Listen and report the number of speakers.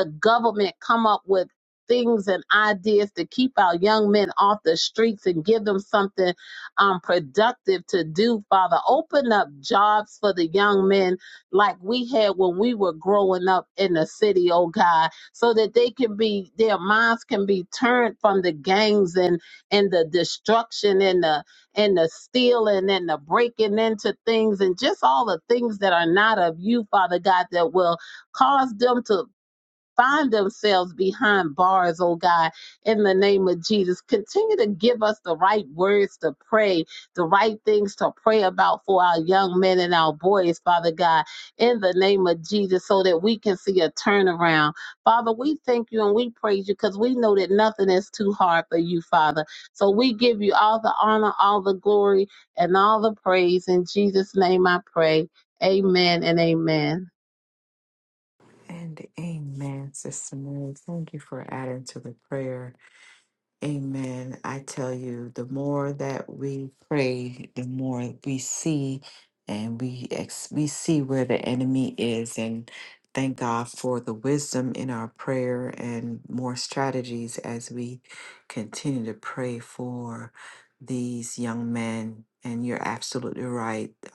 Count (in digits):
2